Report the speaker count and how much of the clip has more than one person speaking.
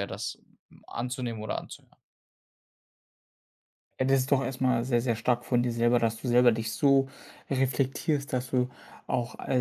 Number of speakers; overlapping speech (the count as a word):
two, no overlap